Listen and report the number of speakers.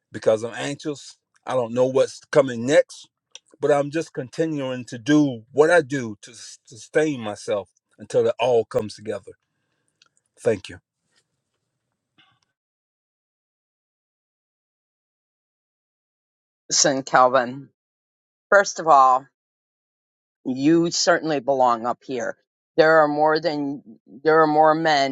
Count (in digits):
2